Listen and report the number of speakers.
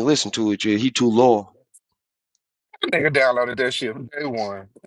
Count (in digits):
2